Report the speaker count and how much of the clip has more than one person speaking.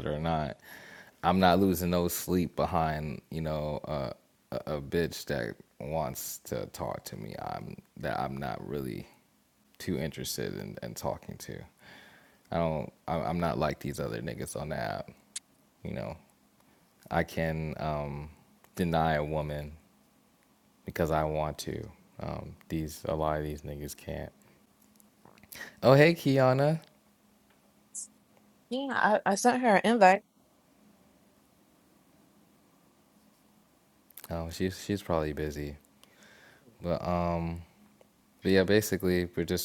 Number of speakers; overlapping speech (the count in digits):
2, no overlap